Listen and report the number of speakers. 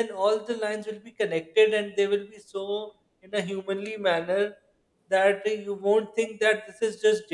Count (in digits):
1